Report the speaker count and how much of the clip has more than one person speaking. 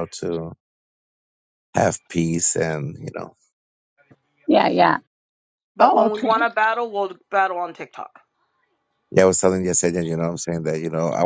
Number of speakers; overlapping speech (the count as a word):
three, about 6%